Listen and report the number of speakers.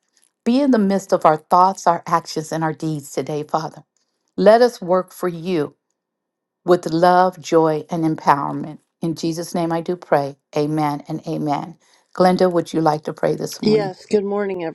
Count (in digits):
2